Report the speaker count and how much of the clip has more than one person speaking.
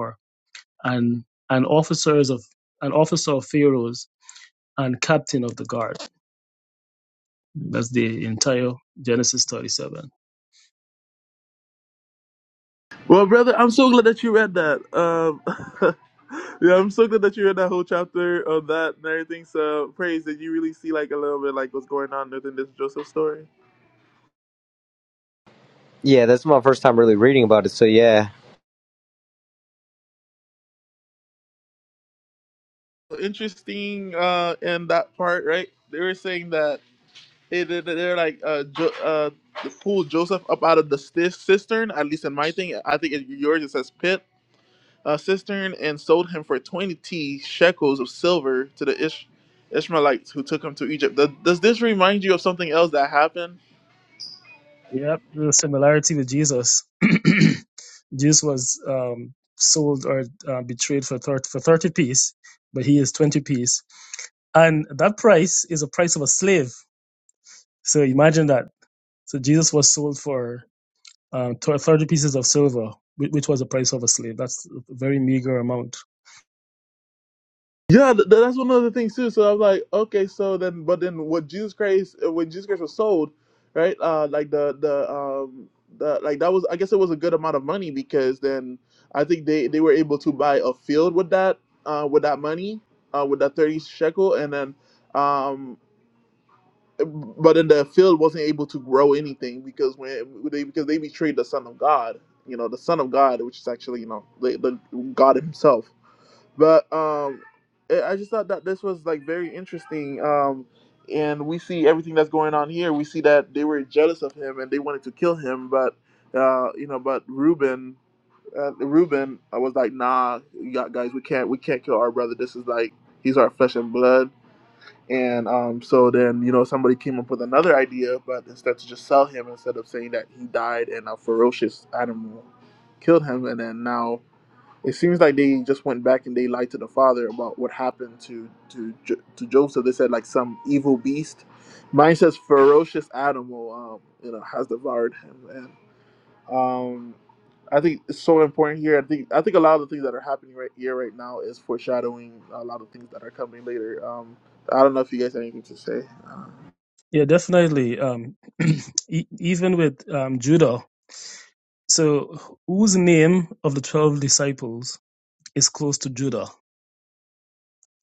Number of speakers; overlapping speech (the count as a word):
three, no overlap